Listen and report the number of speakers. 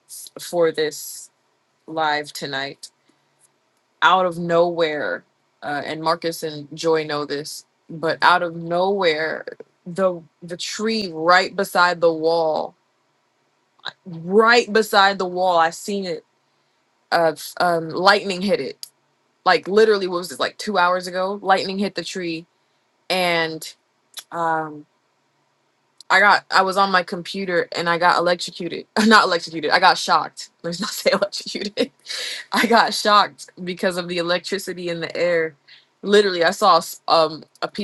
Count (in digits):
1